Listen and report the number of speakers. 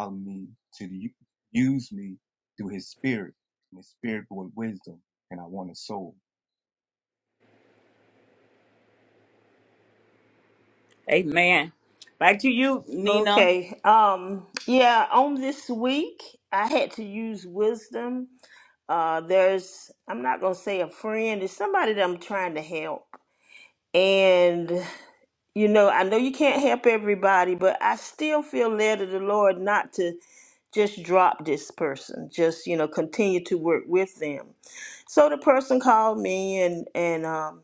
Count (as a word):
three